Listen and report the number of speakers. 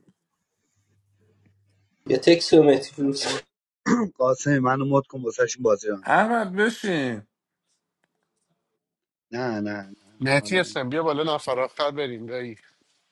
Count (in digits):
4